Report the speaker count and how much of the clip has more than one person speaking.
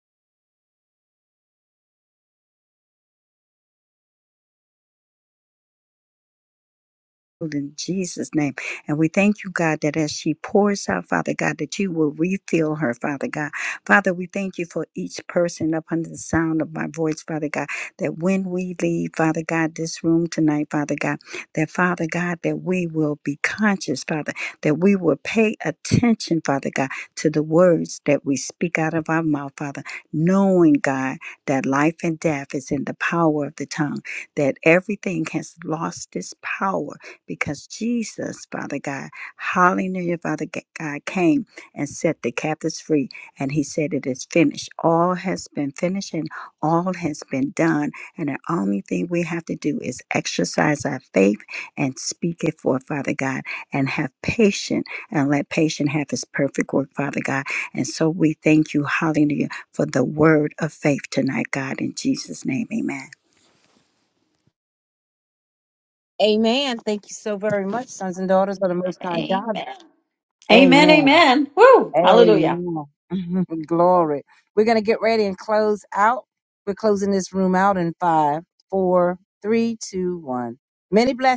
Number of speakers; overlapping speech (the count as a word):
three, about 2%